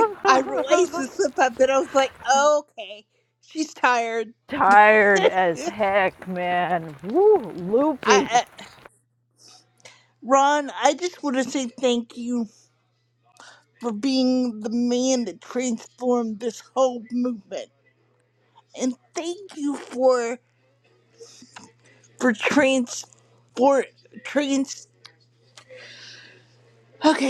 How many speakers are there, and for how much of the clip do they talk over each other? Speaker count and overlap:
2, about 3%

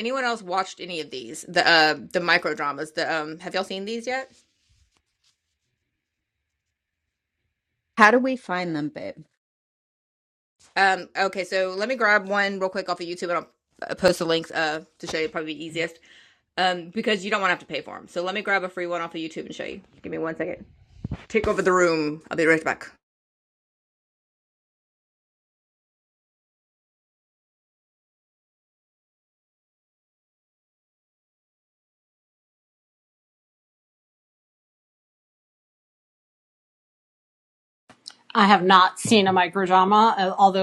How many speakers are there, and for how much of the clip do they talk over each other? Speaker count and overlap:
3, no overlap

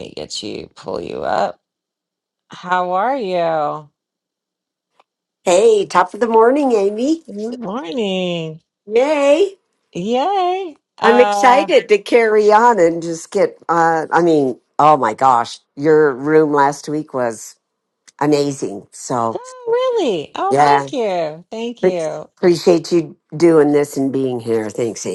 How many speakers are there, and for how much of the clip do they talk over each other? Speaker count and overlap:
2, about 4%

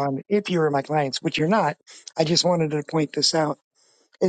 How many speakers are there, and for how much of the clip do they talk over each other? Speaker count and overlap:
1, no overlap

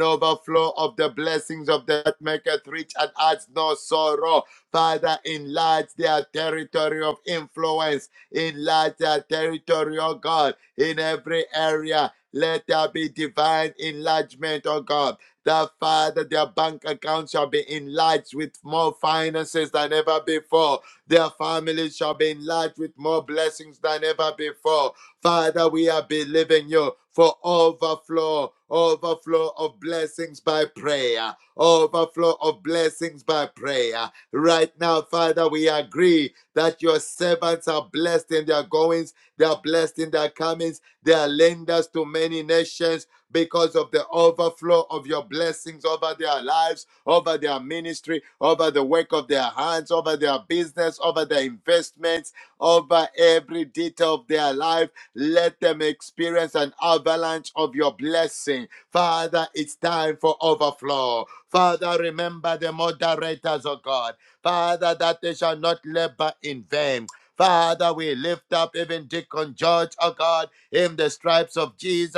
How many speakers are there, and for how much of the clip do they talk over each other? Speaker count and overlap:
1, no overlap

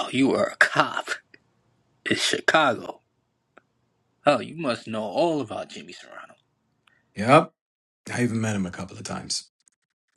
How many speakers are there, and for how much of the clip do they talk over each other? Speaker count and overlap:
2, no overlap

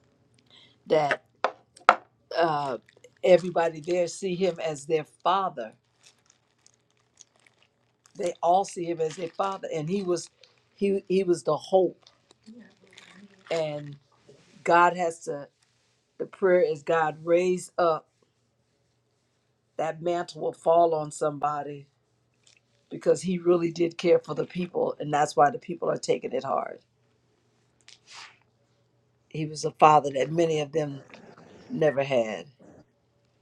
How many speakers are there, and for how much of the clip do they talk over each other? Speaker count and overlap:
1, no overlap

